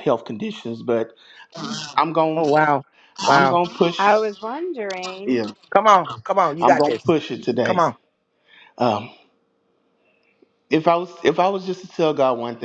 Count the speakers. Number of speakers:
three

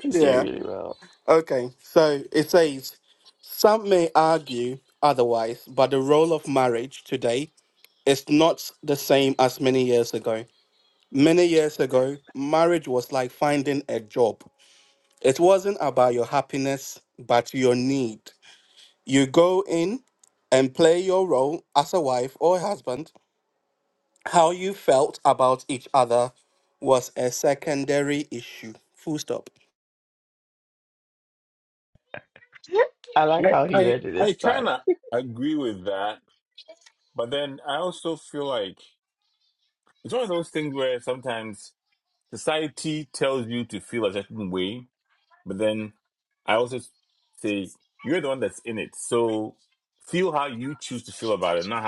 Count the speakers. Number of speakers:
three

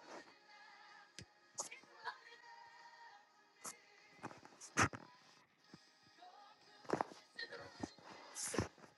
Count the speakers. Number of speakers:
zero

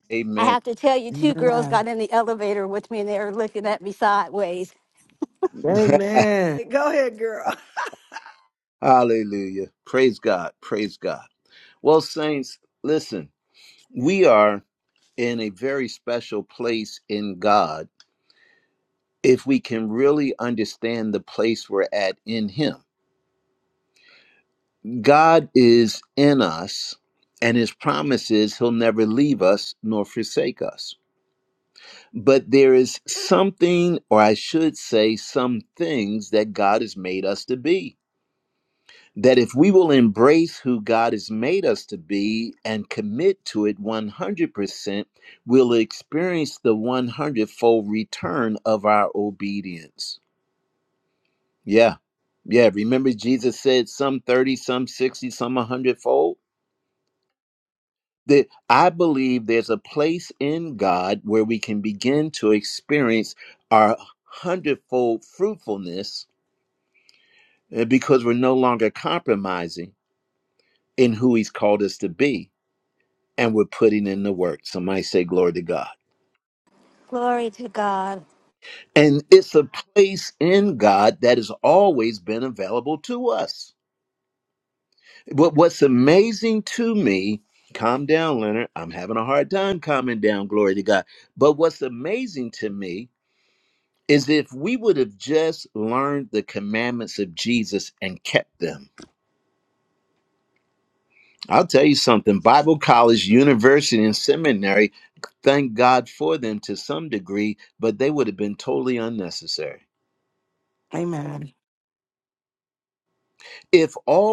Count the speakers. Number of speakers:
four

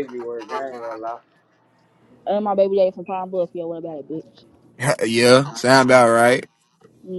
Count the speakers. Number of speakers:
three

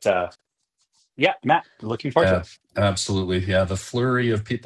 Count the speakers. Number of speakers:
two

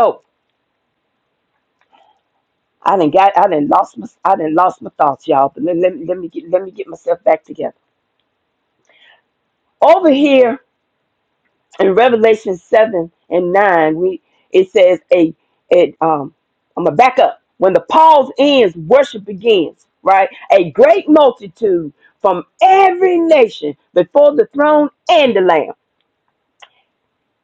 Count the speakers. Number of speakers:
one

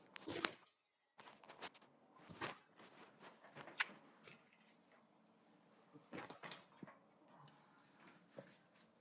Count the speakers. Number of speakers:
zero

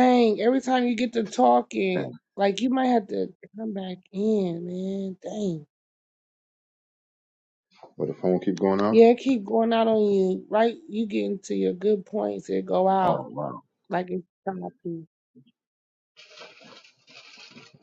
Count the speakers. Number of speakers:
two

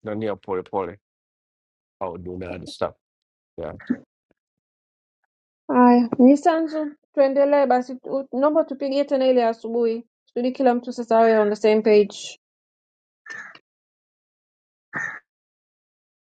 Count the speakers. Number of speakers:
two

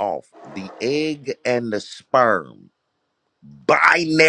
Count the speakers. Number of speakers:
one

